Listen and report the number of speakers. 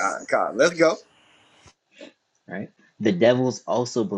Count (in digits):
2